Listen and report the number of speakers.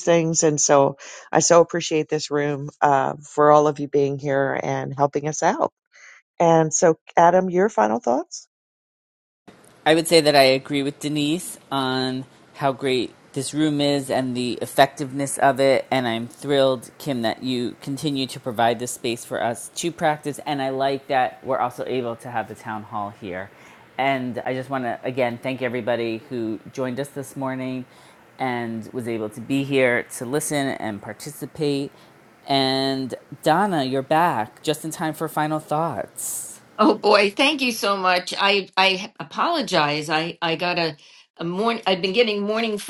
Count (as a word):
three